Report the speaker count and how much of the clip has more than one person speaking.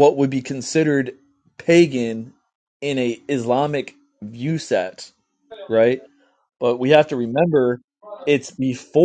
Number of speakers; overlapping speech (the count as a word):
one, no overlap